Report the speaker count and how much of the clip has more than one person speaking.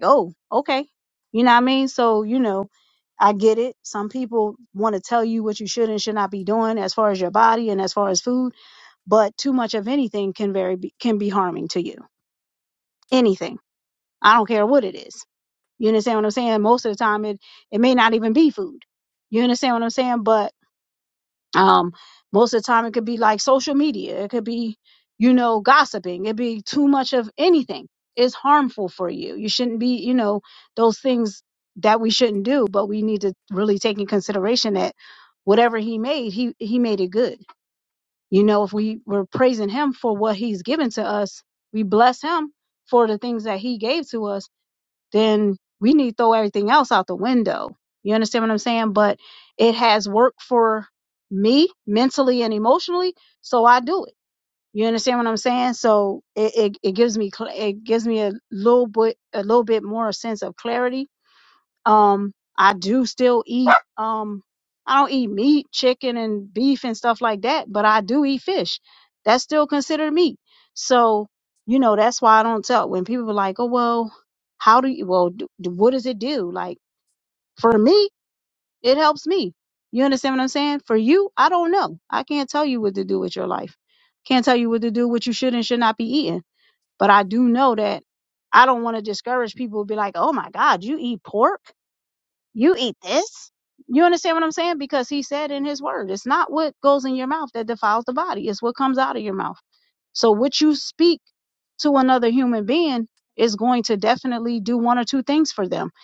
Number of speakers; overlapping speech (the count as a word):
one, no overlap